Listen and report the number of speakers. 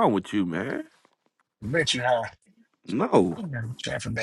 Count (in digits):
2